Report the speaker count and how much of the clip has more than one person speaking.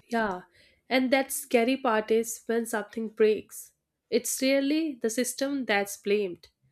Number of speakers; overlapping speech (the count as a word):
one, no overlap